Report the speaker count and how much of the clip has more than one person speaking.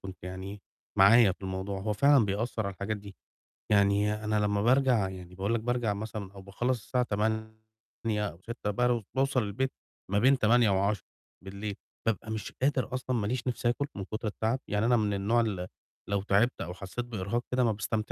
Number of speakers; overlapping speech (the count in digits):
1, no overlap